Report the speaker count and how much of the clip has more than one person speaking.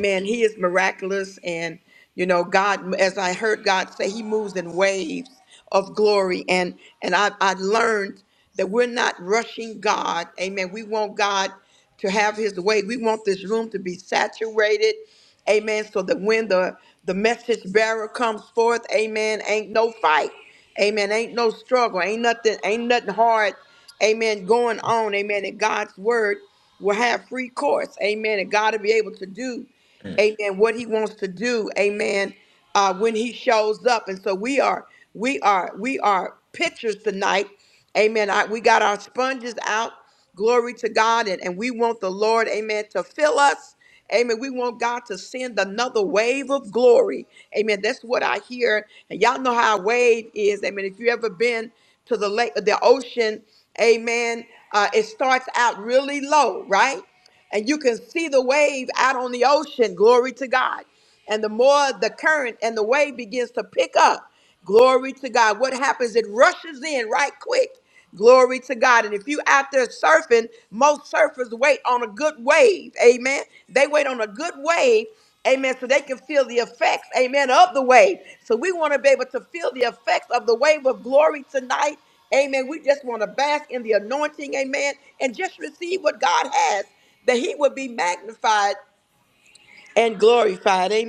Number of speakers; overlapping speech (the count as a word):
one, no overlap